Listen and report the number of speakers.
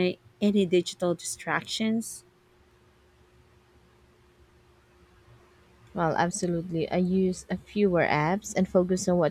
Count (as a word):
two